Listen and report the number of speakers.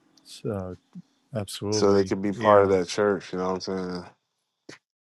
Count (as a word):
two